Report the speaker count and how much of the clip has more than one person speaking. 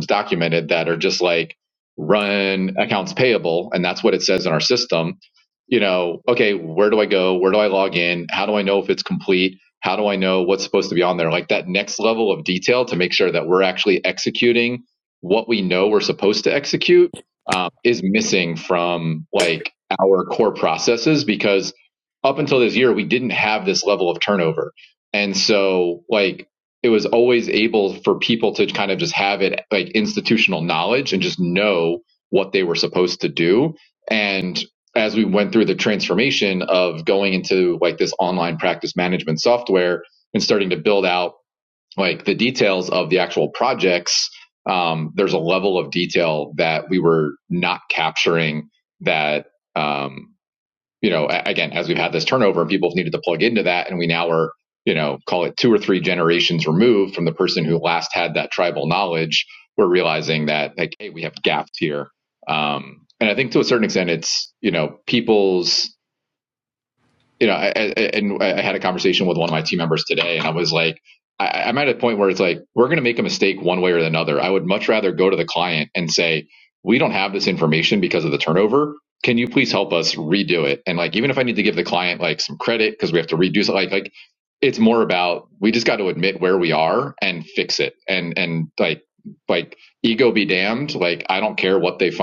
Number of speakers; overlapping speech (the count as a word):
one, no overlap